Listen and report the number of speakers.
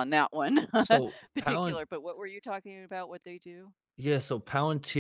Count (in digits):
2